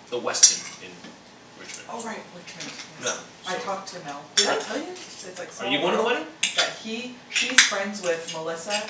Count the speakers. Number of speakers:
2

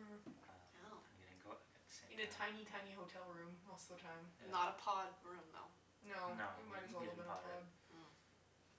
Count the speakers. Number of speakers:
3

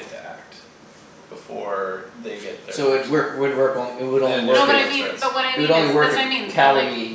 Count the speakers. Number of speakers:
3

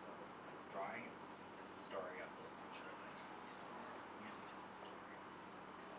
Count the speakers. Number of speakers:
1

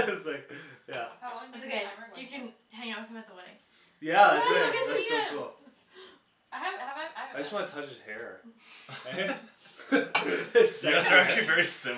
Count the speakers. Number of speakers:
4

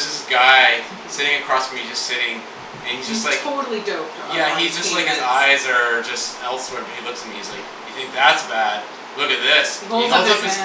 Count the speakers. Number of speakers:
2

